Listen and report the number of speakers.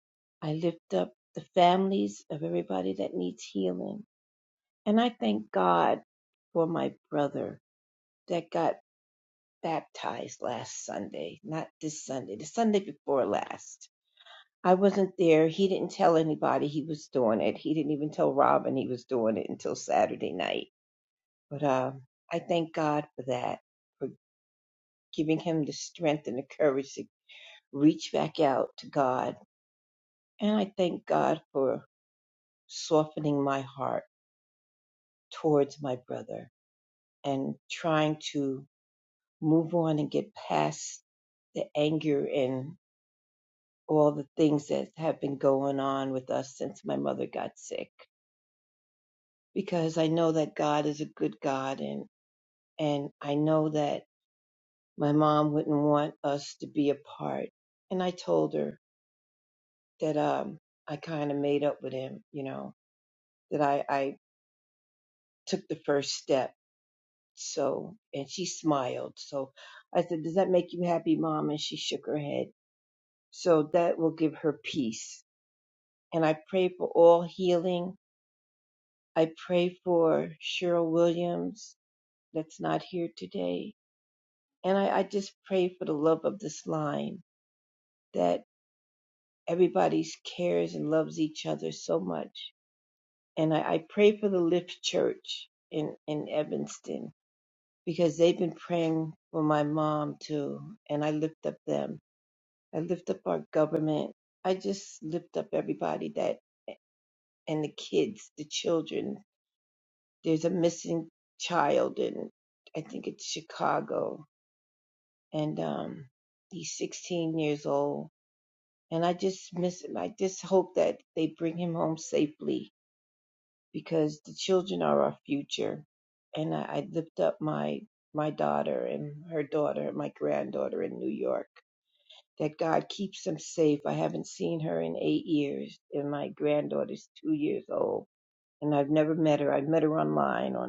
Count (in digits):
1